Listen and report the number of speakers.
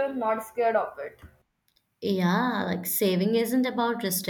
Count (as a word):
two